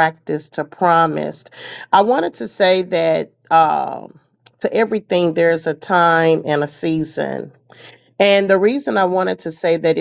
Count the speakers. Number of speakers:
1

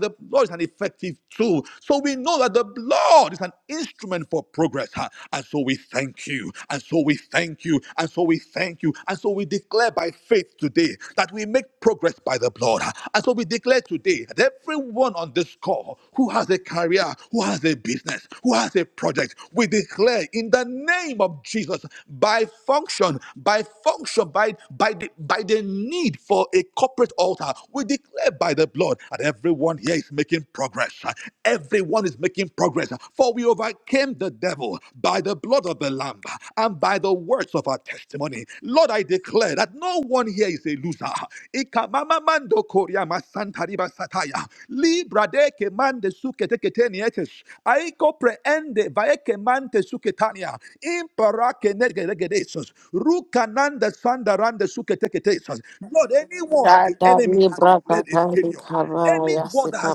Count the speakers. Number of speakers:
2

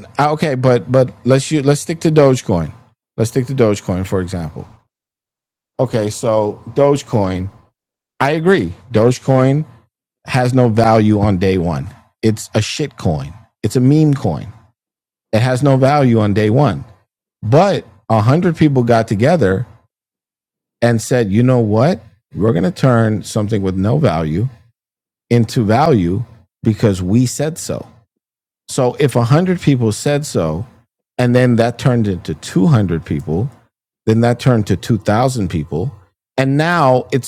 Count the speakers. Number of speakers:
1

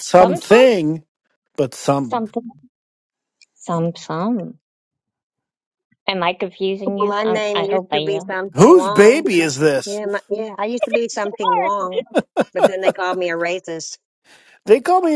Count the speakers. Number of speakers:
3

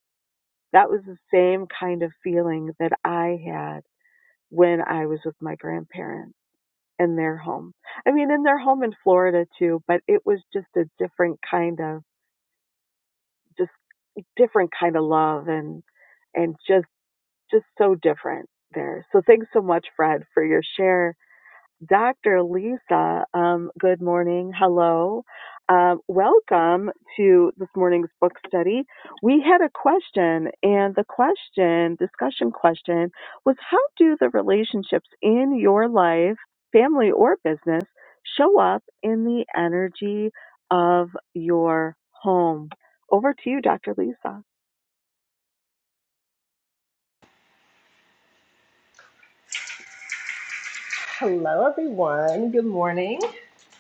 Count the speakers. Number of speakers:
2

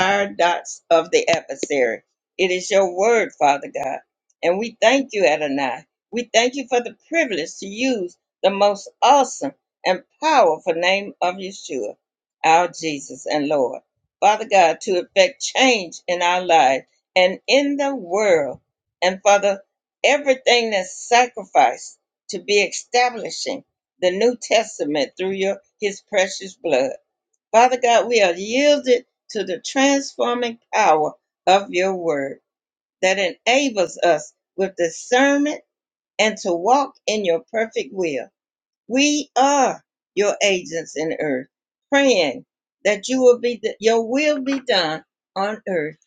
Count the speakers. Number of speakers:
1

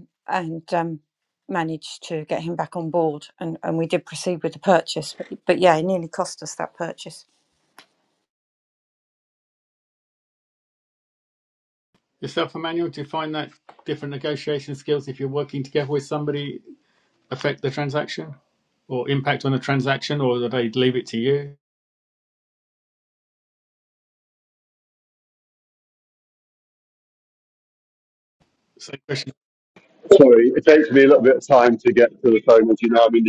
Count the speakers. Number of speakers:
3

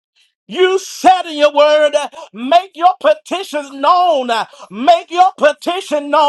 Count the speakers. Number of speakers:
1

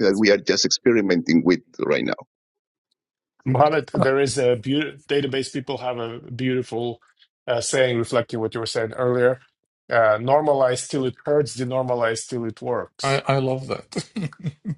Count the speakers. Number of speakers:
3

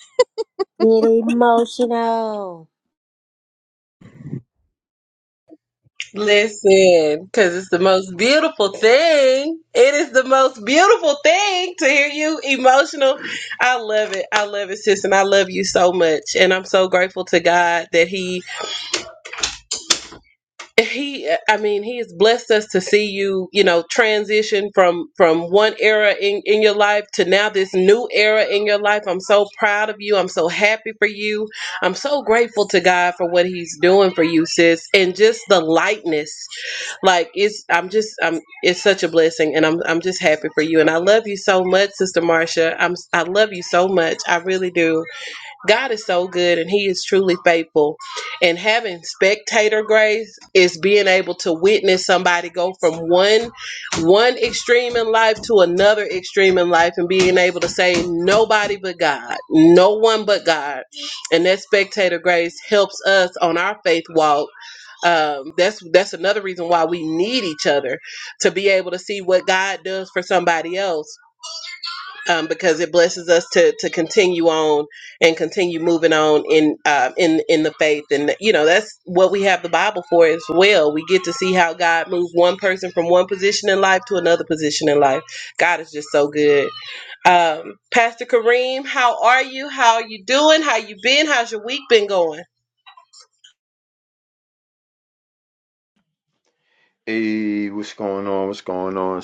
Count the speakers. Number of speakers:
3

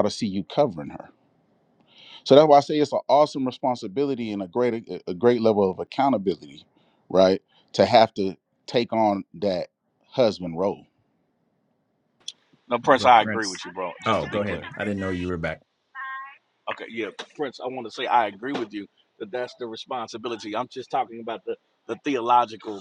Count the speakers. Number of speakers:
3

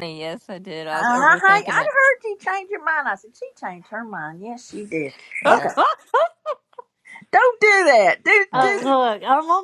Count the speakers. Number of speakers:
3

